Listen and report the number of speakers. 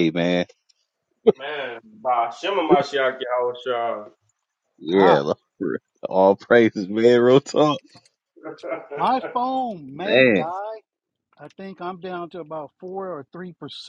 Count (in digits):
3